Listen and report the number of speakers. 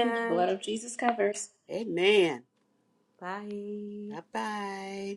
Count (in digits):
3